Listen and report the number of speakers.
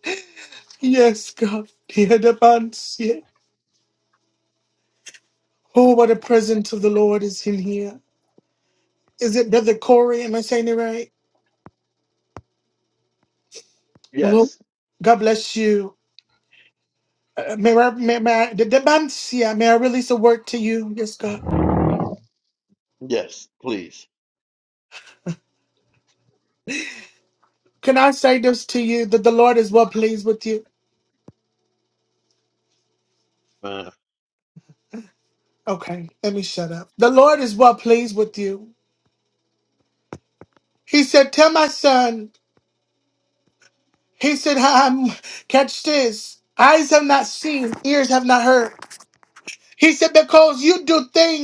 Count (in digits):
2